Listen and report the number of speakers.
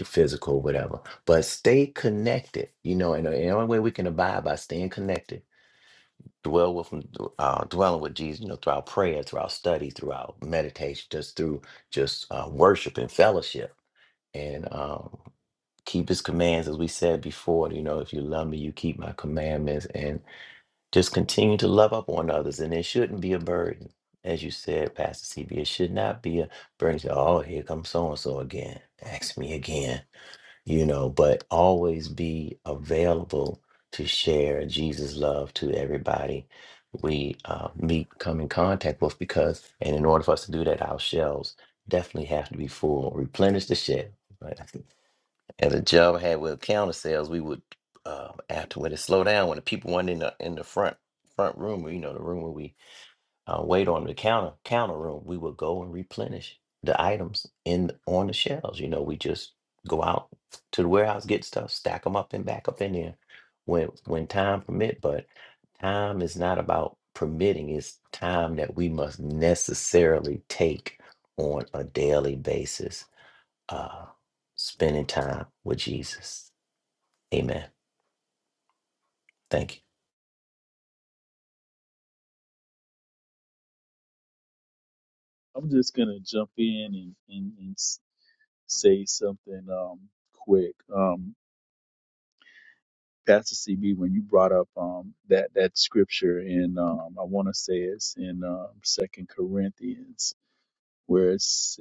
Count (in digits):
2